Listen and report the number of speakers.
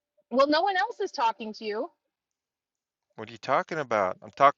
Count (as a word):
two